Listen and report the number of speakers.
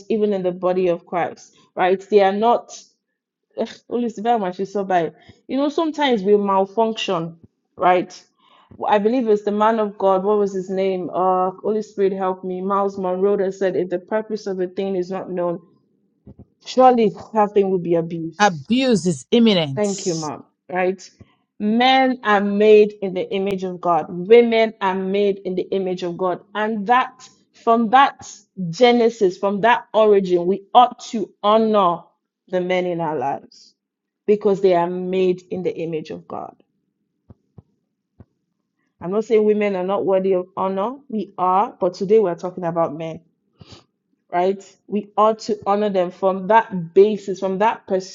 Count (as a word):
two